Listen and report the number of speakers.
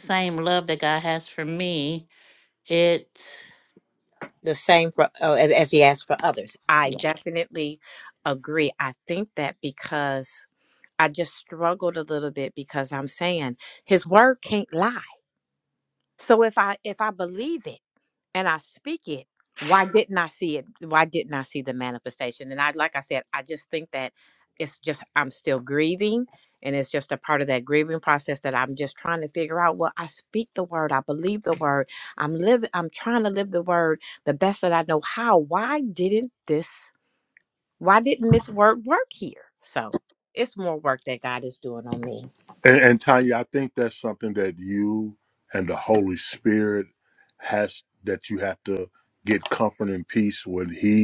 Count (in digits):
3